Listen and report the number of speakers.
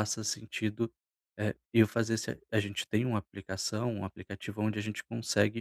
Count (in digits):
1